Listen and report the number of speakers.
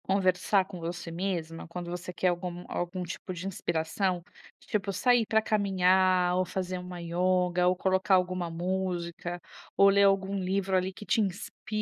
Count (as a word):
one